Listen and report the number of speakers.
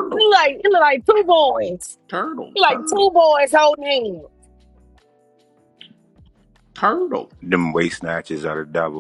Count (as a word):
three